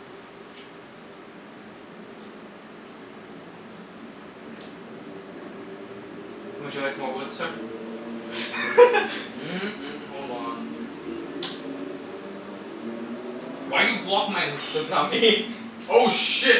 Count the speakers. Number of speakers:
3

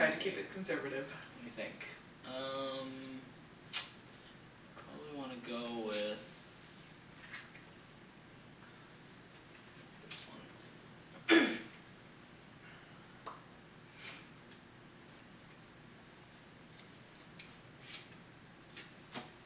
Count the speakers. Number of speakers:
2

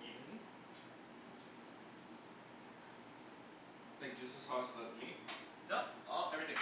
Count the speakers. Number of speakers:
2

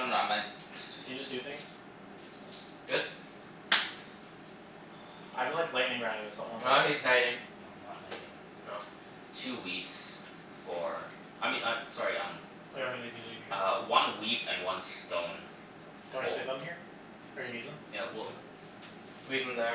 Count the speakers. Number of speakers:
3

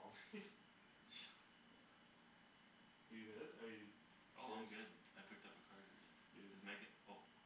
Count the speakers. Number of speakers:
2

